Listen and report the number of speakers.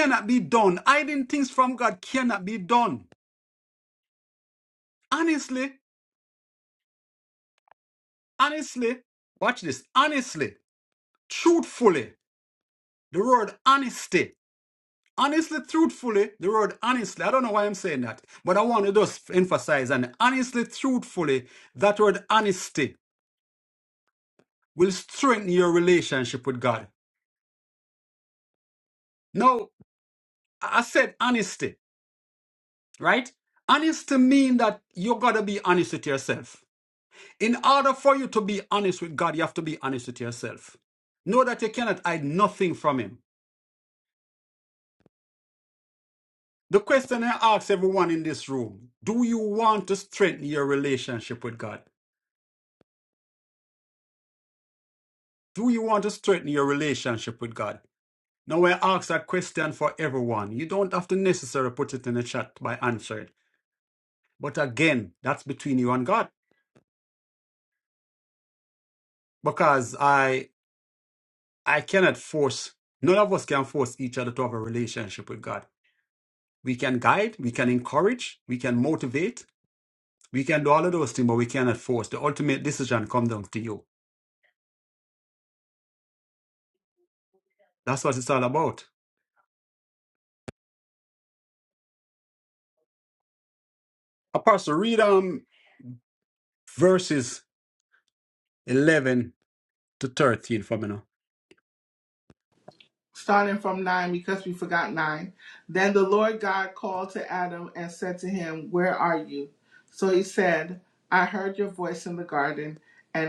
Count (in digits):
2